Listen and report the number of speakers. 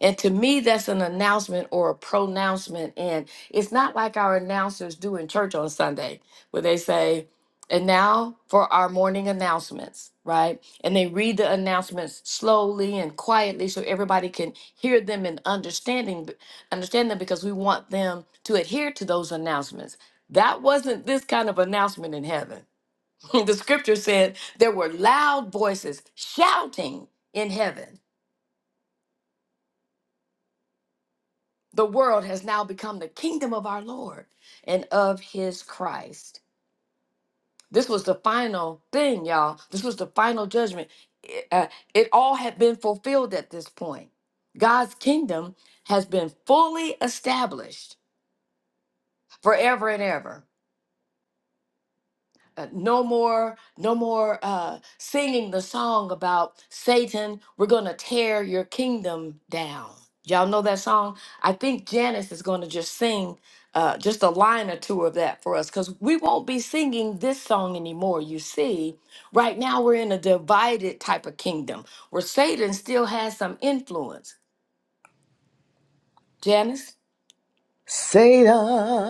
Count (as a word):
two